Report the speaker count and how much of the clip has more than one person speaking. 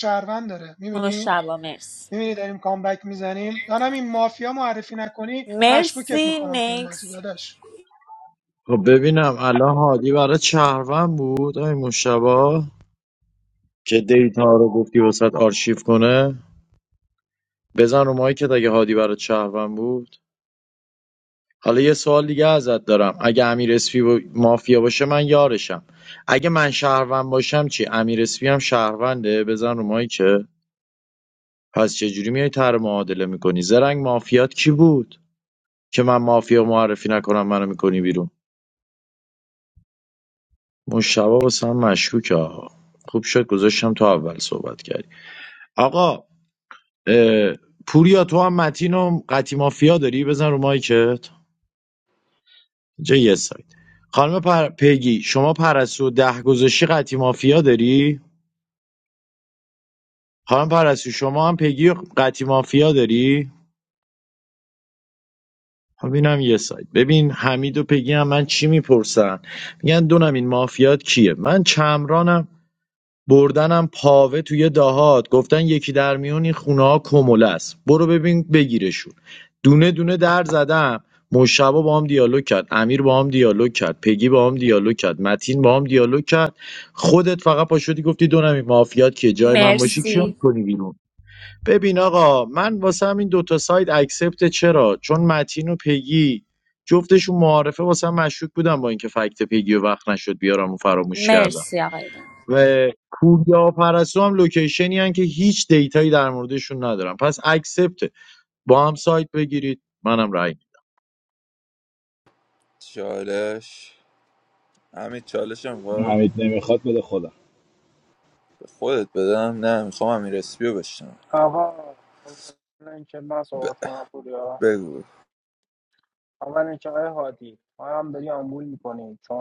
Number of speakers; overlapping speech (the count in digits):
6, about 3%